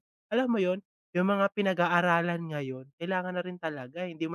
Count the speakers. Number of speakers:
one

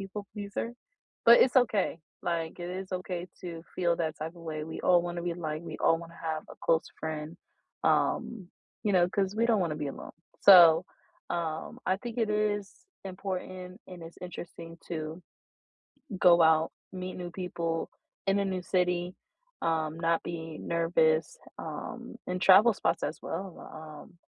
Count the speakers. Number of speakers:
one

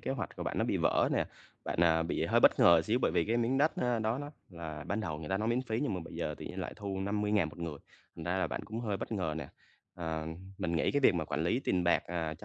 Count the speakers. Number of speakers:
one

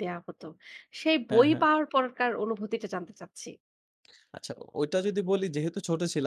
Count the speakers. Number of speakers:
two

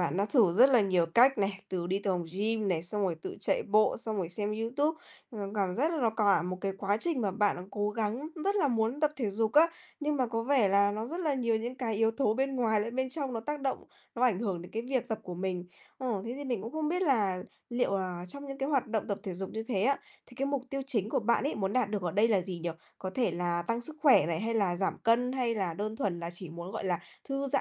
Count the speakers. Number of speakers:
one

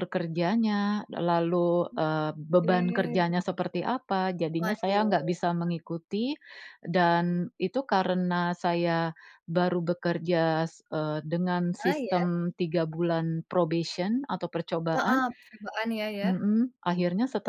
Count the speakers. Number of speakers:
two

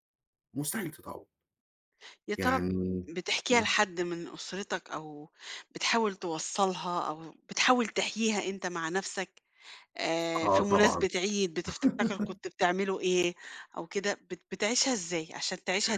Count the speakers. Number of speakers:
two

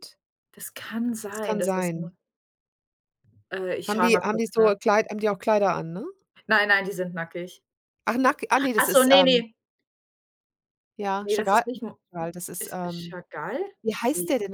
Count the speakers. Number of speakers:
two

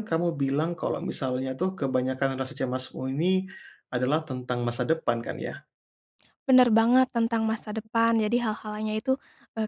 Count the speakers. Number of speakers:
two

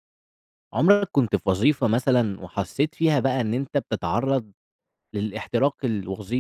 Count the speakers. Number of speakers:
one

